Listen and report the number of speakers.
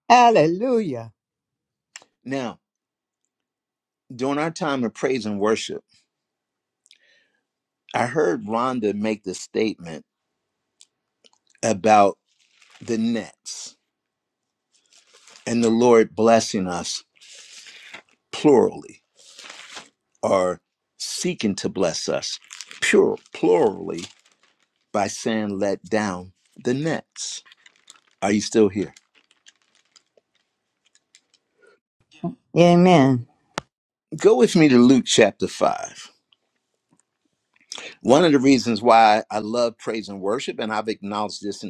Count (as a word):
two